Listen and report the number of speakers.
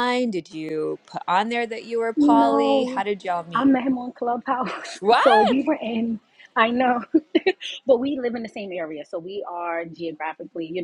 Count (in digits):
2